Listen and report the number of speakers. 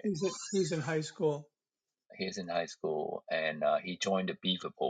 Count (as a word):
two